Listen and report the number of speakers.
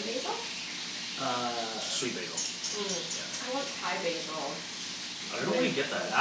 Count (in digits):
2